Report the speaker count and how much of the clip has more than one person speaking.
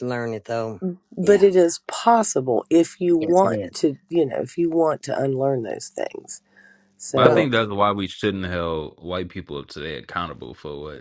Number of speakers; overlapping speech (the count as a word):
three, about 10%